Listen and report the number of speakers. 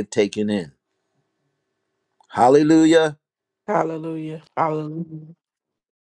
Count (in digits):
2